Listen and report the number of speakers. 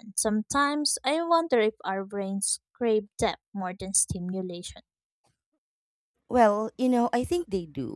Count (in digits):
2